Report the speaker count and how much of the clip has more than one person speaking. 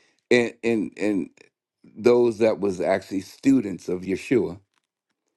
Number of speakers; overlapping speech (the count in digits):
1, no overlap